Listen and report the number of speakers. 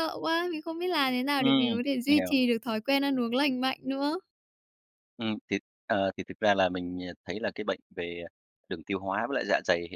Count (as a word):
two